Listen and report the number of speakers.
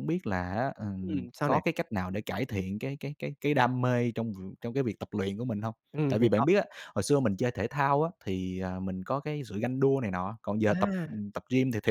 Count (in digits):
2